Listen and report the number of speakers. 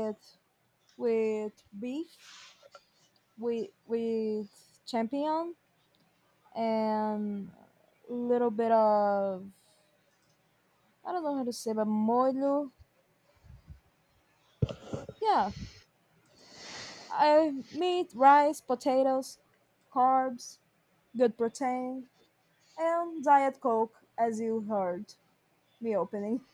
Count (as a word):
one